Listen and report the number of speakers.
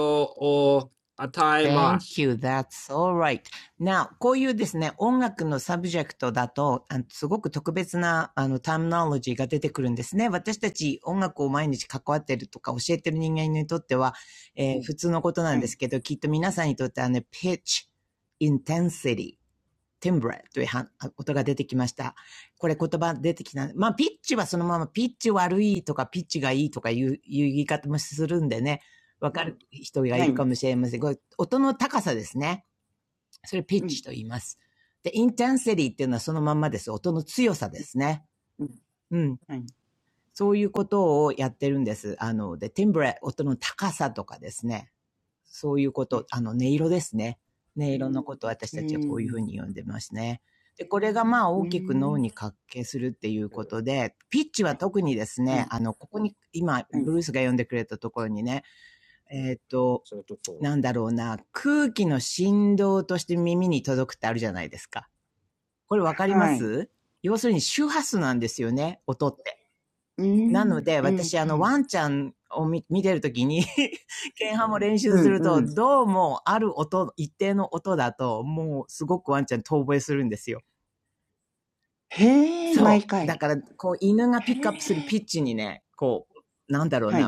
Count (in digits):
3